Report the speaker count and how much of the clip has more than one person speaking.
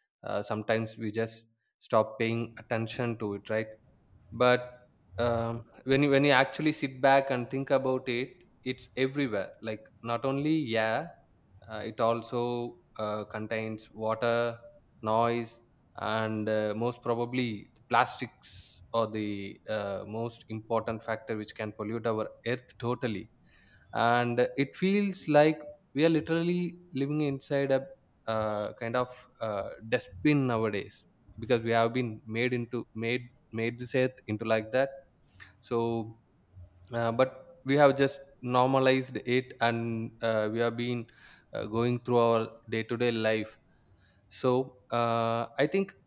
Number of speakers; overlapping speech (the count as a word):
one, no overlap